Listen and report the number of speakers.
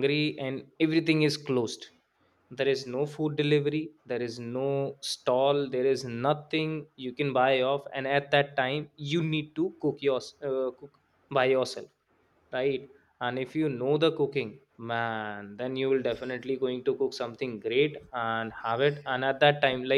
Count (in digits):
1